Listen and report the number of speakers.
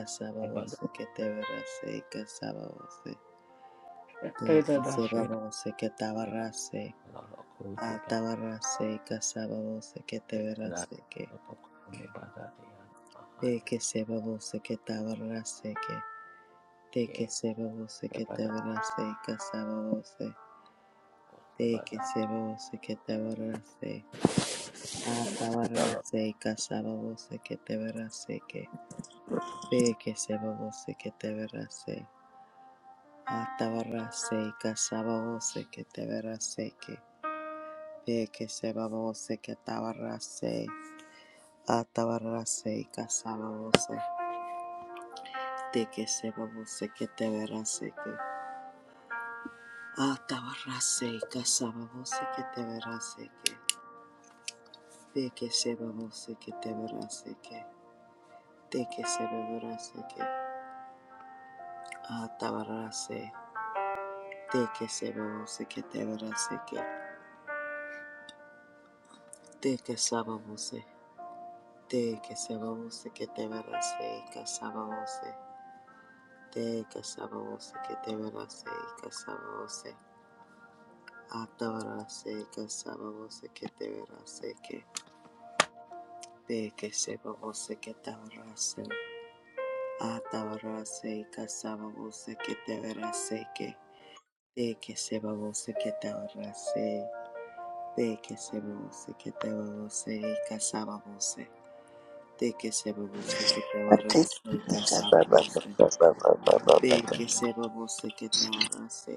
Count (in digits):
3